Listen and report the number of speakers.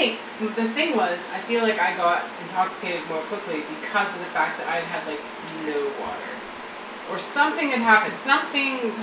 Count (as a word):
one